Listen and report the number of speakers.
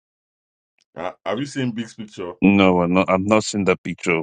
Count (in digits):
2